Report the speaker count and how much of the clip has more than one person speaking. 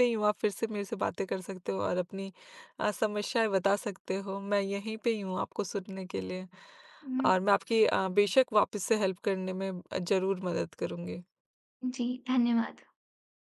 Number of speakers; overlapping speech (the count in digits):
2, about 1%